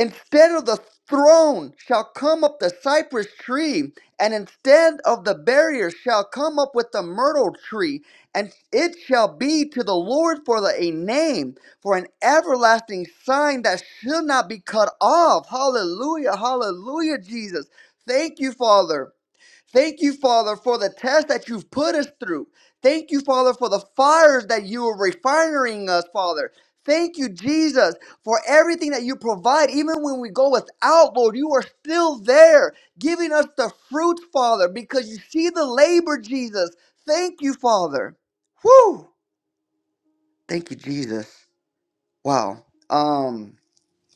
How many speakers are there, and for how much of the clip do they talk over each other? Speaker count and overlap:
one, no overlap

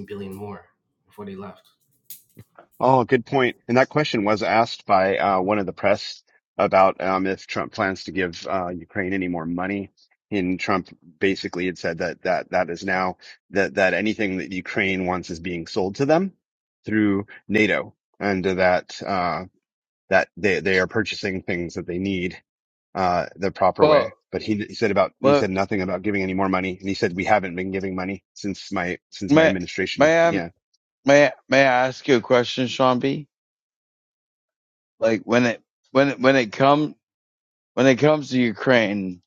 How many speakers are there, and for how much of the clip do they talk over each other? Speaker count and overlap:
three, about 3%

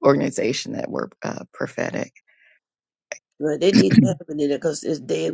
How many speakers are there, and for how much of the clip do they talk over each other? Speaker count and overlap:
two, no overlap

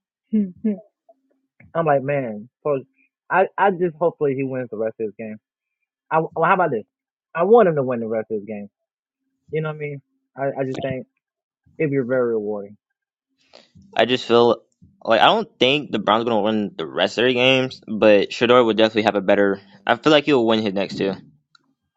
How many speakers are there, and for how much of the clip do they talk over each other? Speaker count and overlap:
two, no overlap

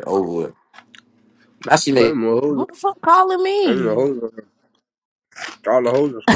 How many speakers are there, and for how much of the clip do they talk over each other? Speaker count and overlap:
three, about 10%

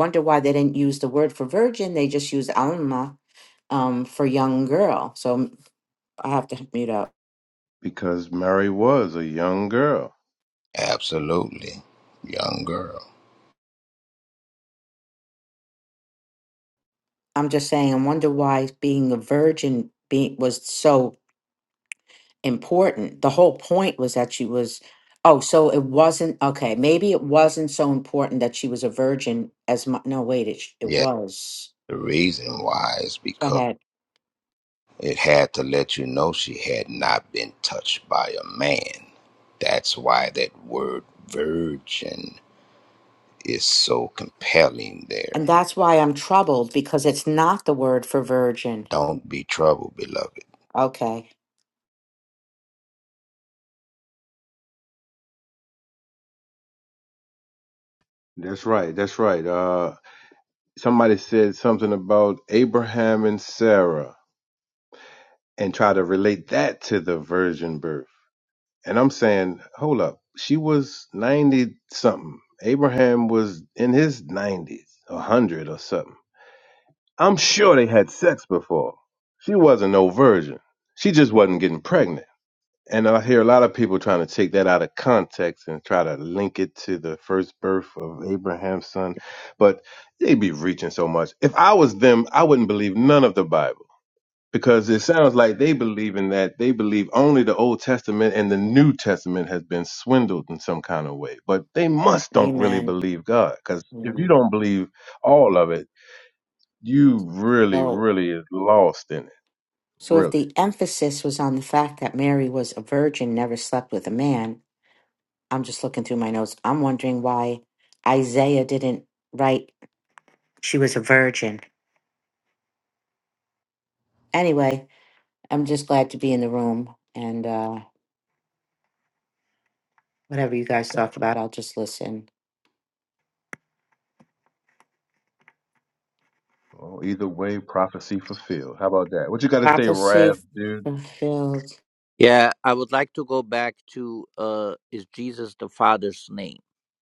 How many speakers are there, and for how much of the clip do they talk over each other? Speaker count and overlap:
four, about 2%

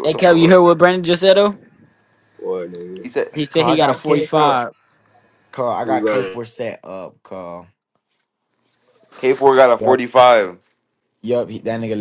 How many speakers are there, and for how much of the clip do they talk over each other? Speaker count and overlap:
four, about 19%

